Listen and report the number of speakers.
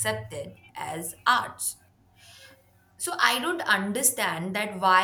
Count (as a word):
one